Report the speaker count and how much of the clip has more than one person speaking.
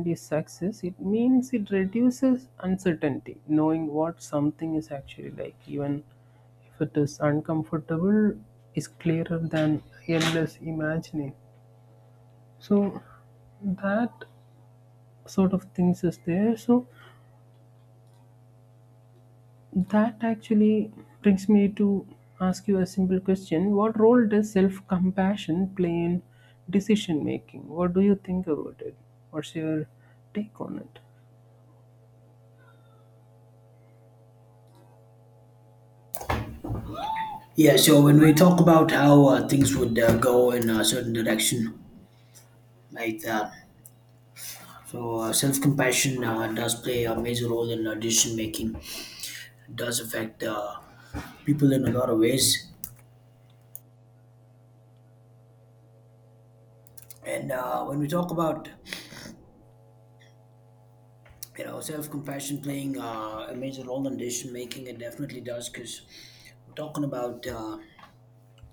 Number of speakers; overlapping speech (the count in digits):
2, no overlap